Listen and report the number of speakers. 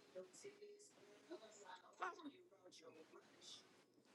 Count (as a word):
zero